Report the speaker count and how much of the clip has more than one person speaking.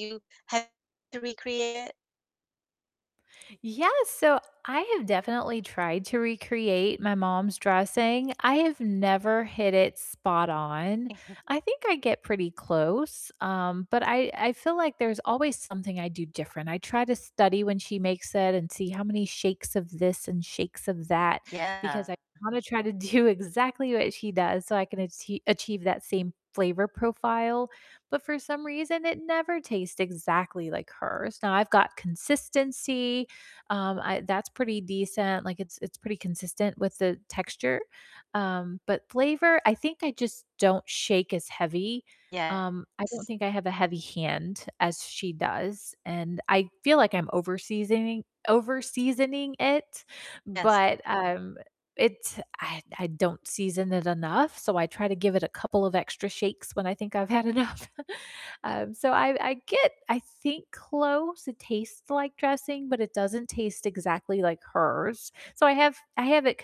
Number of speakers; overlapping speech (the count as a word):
two, about 1%